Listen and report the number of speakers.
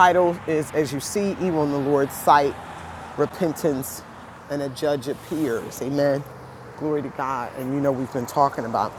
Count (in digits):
1